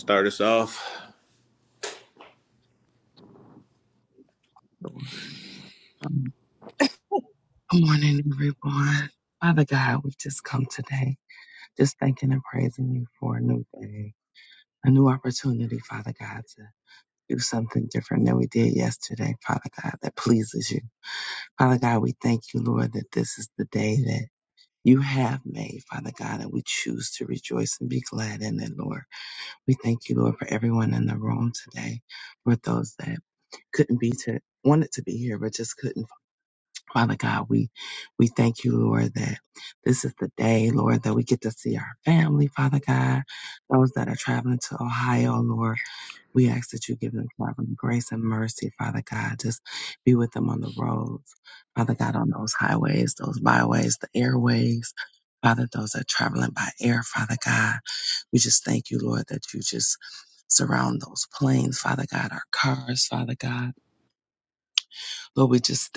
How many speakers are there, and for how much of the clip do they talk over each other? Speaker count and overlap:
two, no overlap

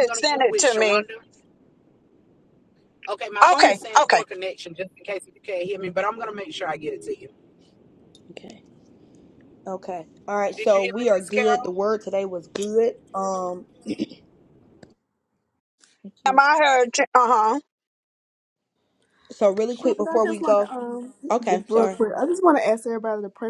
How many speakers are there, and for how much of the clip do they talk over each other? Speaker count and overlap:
four, about 18%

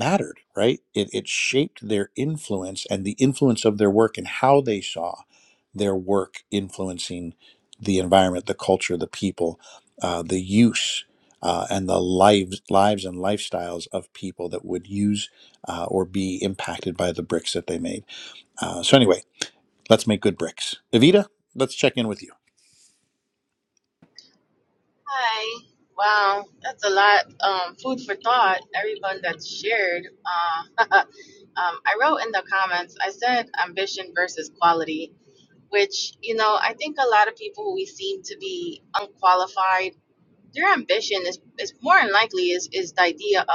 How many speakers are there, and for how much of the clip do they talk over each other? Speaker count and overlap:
two, no overlap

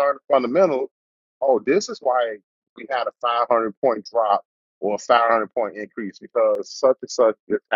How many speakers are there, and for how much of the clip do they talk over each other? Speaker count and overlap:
one, no overlap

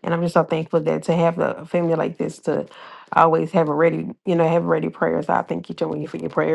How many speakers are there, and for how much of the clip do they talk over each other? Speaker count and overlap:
one, no overlap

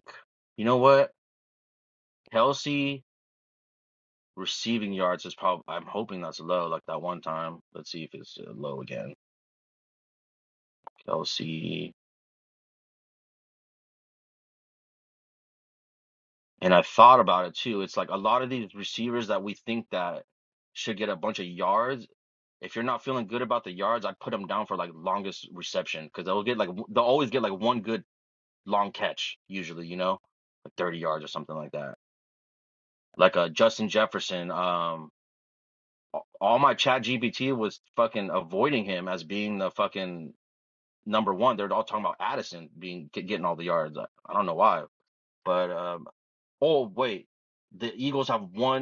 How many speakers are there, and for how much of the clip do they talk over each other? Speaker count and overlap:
one, no overlap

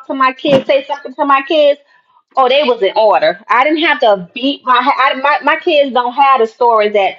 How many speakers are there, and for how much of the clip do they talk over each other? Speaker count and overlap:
one, no overlap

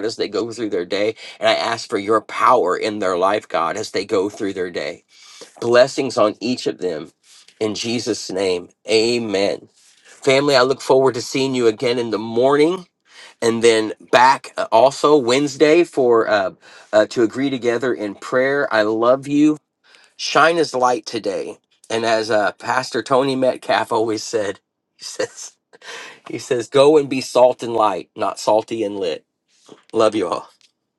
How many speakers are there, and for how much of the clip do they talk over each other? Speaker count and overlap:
one, no overlap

